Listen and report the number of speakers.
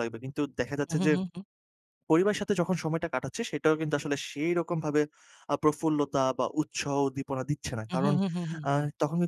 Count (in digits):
2